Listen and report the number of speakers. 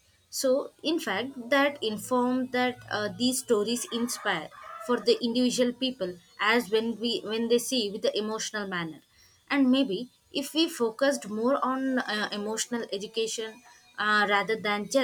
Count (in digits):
1